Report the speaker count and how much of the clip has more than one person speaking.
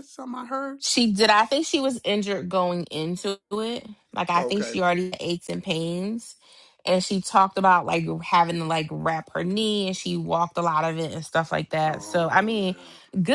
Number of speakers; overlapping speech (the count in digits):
2, about 10%